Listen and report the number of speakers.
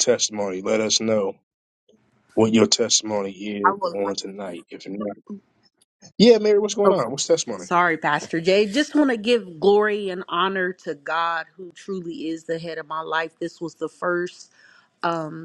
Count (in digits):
2